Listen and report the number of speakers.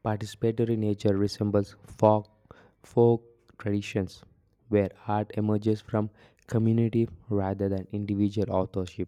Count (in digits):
1